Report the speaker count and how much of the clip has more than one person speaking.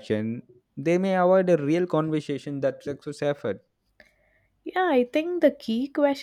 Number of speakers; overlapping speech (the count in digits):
2, no overlap